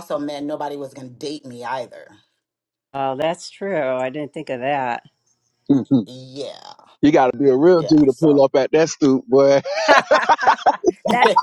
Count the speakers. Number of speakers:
three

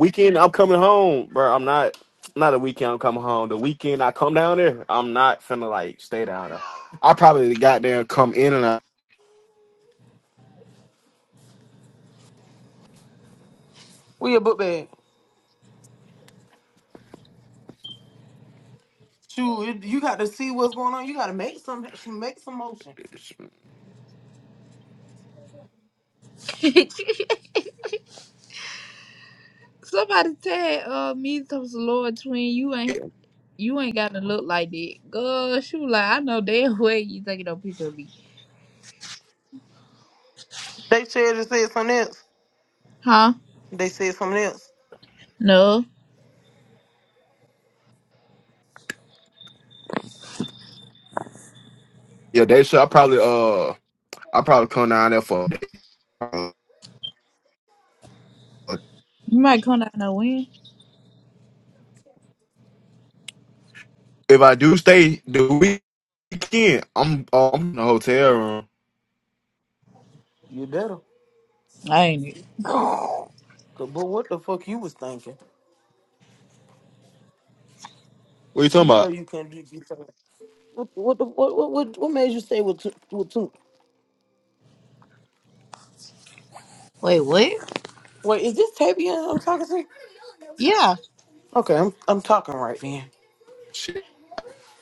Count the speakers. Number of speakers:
three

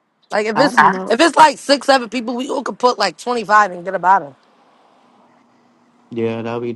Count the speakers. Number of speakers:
two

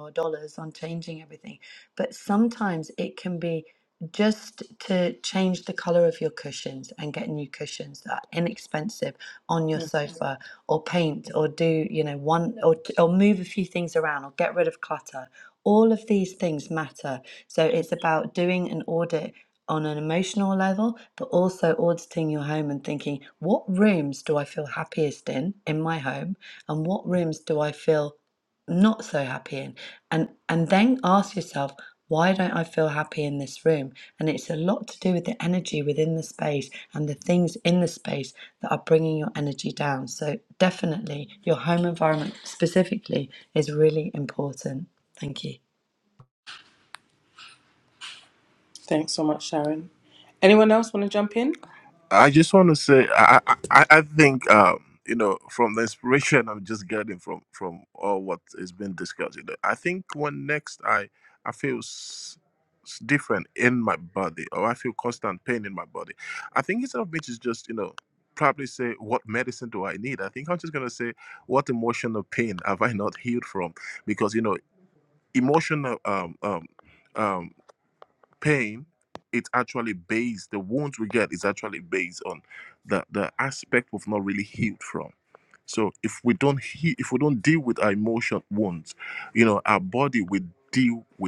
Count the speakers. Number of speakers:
three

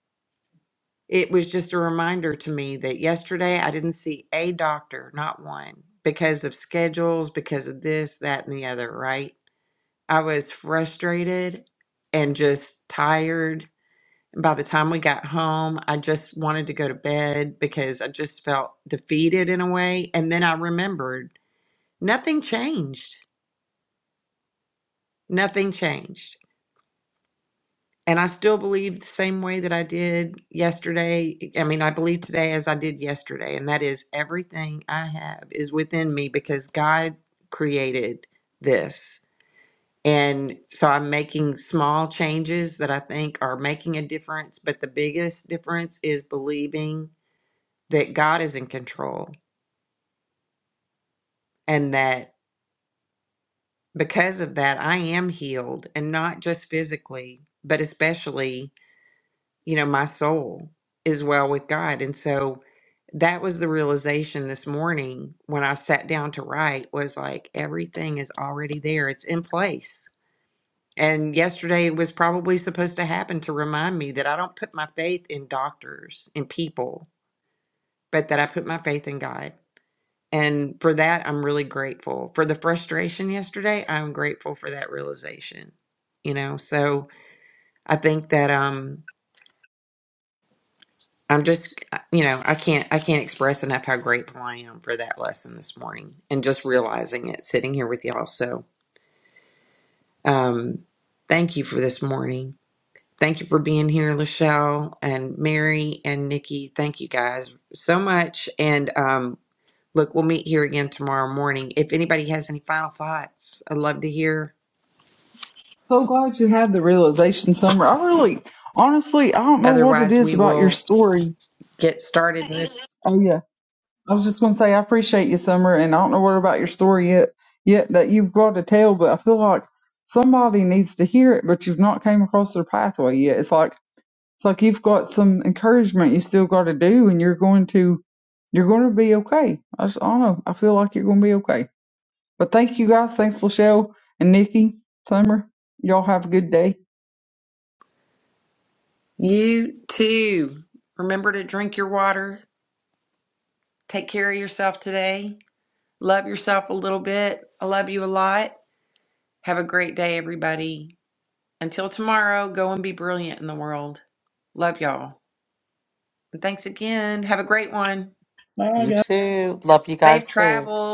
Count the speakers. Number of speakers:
three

